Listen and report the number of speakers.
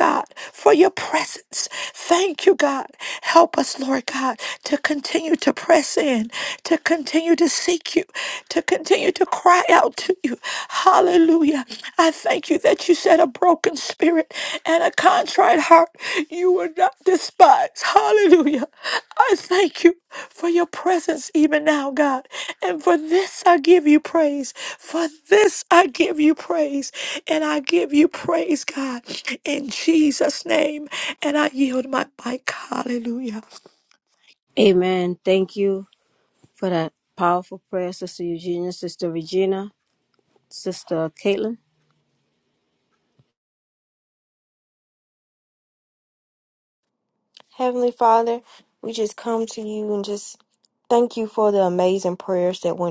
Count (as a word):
three